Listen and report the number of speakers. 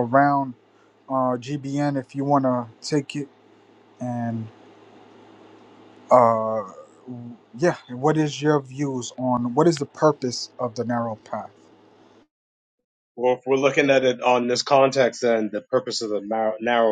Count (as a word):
two